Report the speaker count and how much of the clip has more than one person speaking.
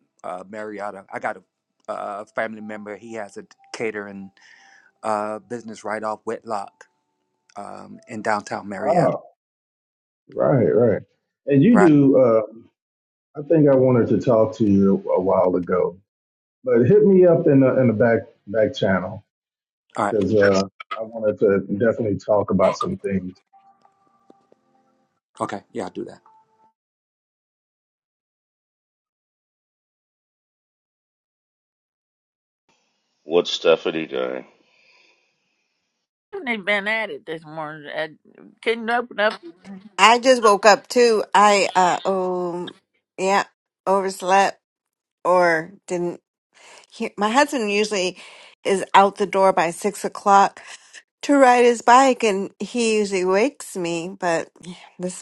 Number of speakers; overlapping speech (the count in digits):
5, about 1%